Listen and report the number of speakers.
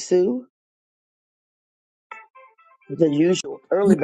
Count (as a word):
one